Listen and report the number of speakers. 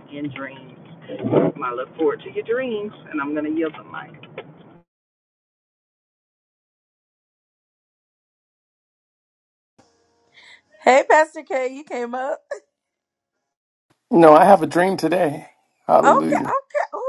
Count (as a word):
three